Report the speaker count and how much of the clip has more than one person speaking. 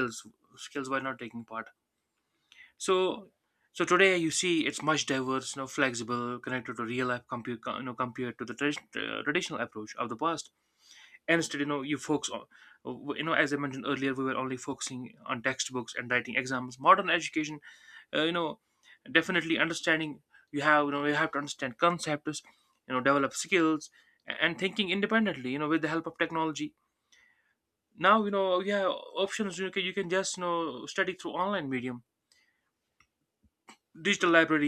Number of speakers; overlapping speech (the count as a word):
one, no overlap